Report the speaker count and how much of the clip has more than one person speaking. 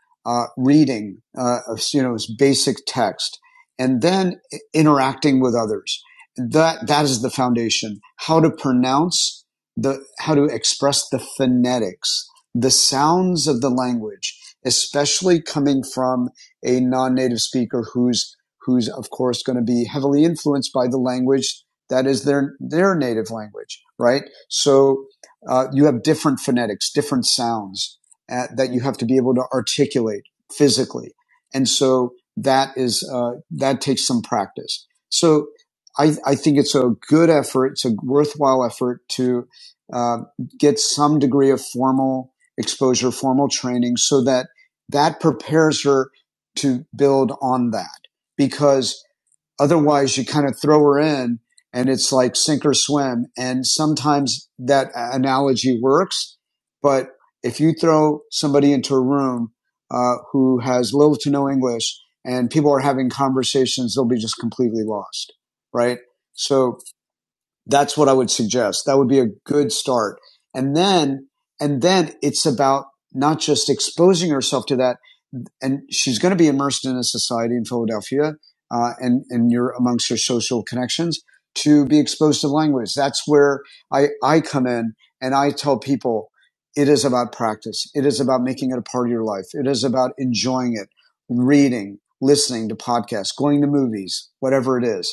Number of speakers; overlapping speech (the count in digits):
1, no overlap